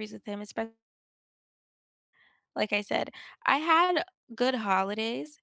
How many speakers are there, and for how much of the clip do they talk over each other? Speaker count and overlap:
1, no overlap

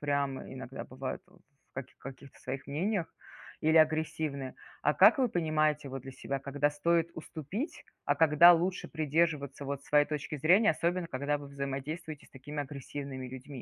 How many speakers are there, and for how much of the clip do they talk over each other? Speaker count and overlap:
1, no overlap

